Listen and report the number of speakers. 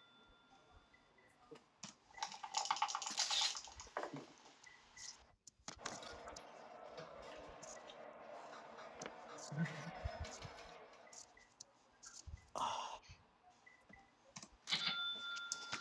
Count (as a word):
zero